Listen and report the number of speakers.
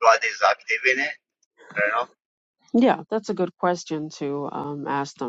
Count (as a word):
two